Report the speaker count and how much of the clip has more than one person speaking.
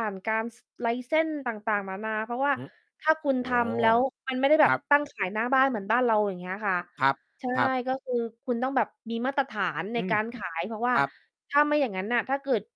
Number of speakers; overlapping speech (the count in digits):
2, about 6%